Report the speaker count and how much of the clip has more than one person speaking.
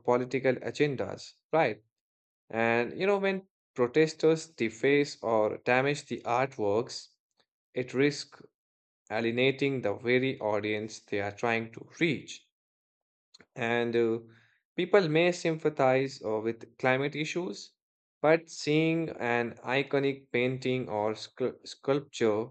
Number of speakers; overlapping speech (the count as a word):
one, no overlap